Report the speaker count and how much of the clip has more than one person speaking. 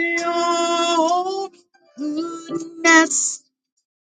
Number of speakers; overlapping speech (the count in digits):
1, no overlap